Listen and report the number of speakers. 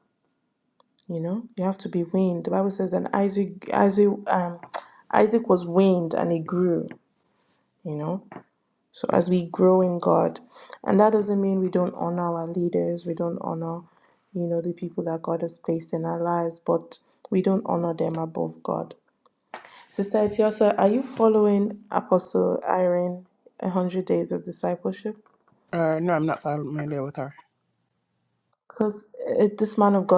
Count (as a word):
two